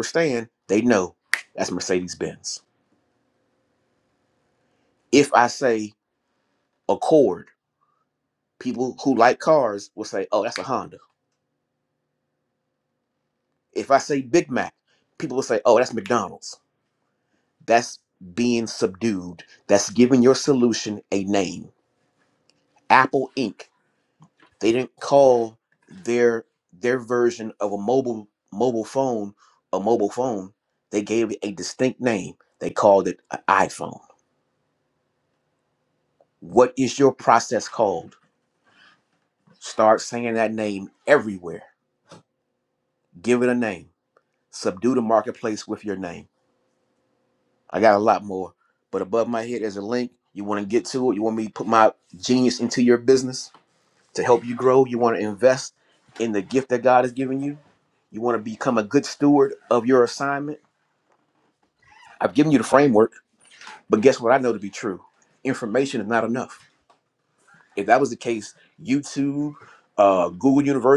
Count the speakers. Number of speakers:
1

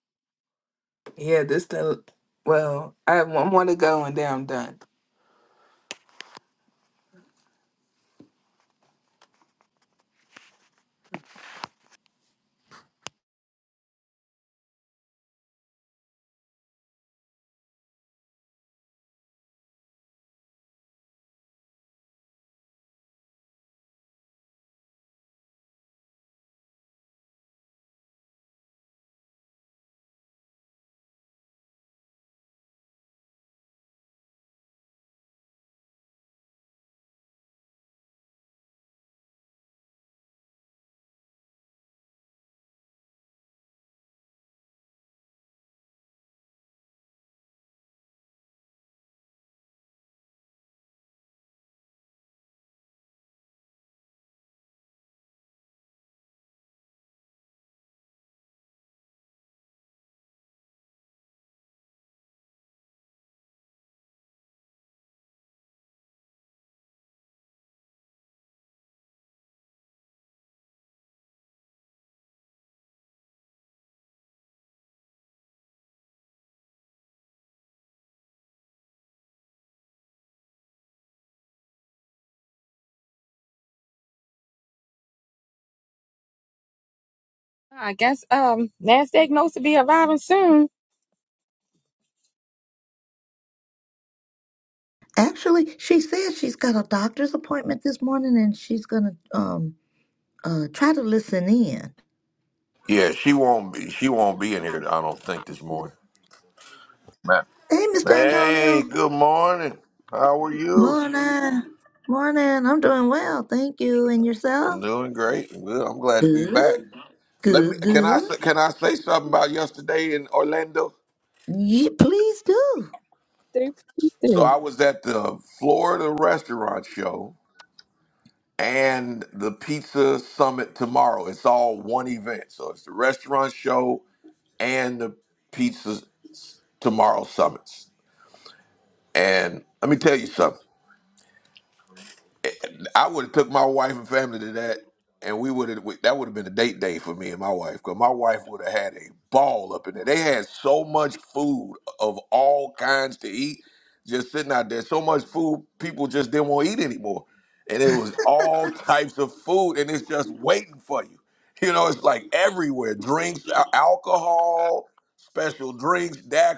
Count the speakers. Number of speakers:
4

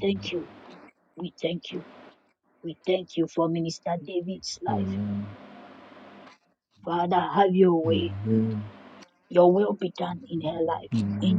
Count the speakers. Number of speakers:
2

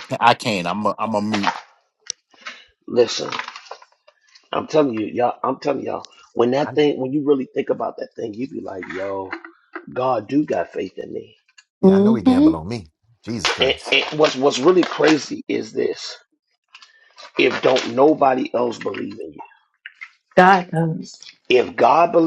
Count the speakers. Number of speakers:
4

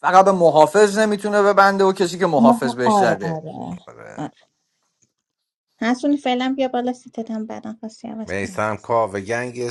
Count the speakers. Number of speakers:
3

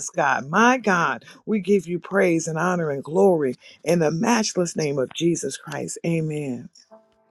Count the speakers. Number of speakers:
1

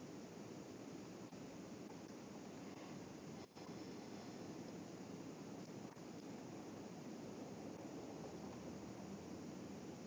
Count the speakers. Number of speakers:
0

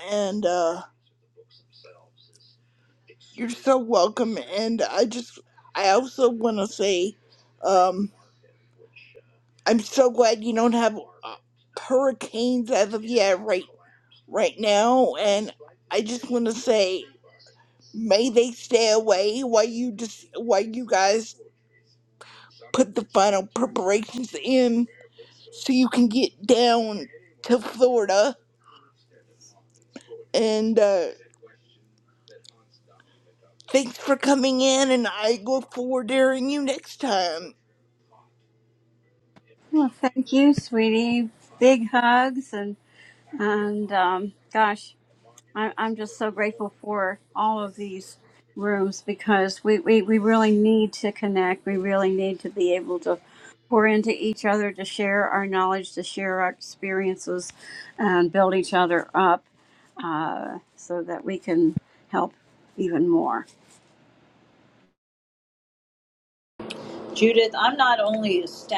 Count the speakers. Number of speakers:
3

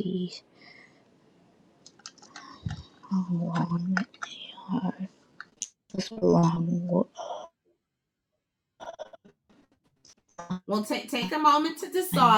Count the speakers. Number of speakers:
2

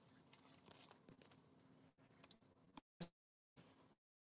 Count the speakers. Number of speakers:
0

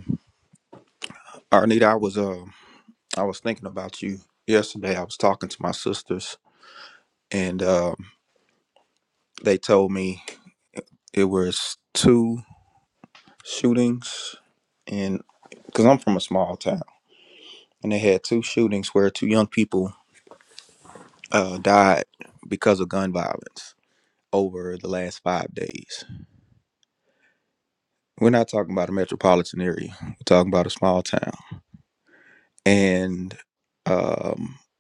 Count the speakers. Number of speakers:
1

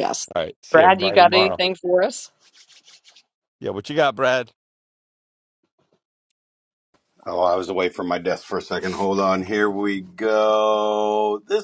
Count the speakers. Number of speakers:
3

